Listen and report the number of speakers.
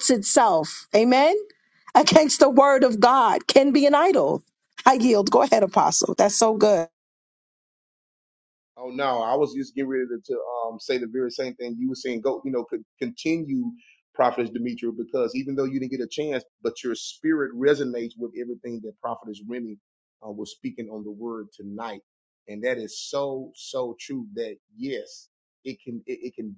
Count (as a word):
two